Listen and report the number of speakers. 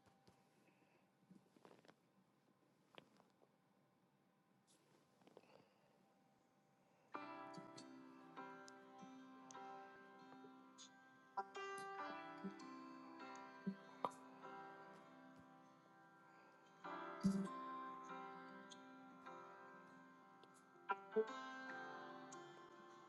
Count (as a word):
zero